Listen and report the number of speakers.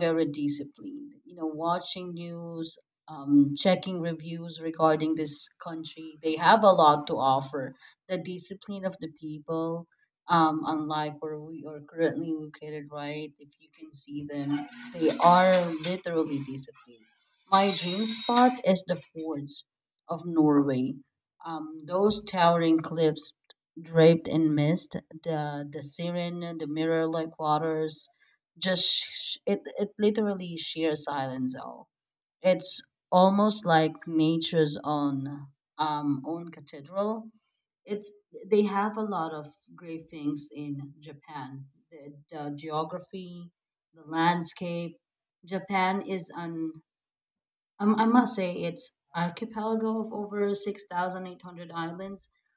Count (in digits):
1